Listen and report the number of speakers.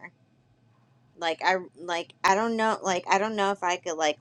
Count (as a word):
one